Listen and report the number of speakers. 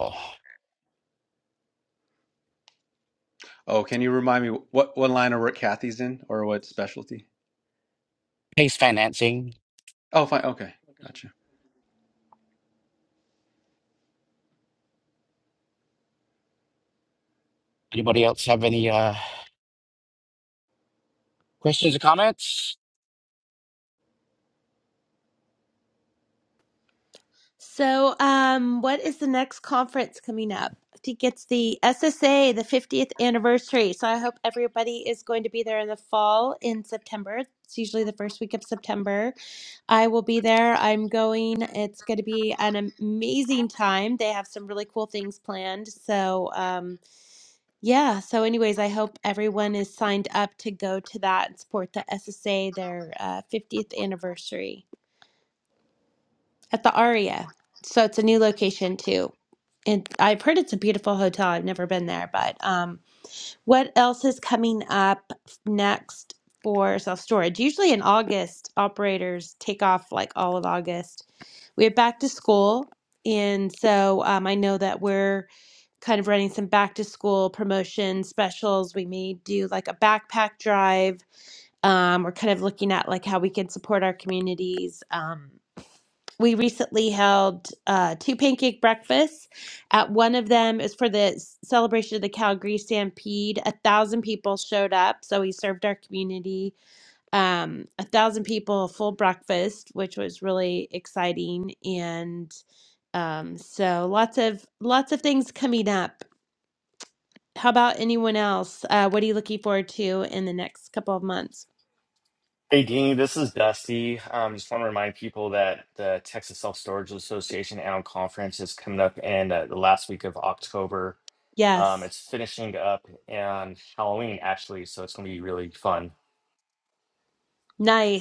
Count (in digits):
4